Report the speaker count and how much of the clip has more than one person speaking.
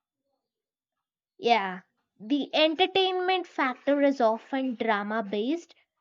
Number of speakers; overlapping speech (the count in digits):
1, no overlap